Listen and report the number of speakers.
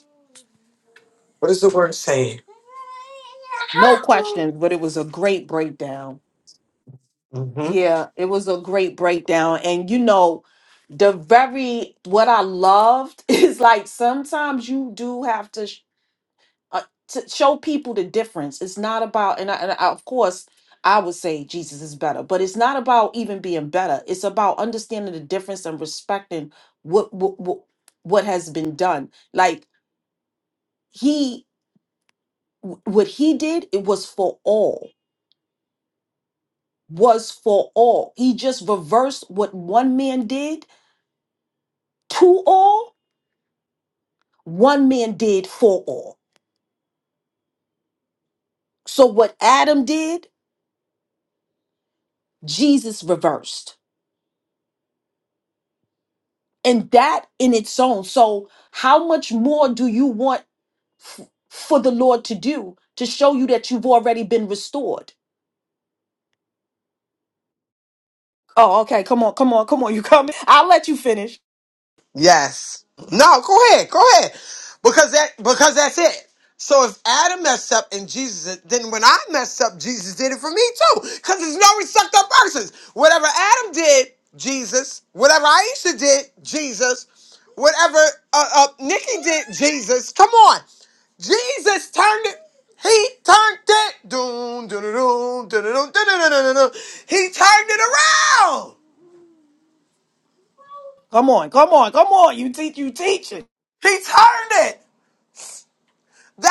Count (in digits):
2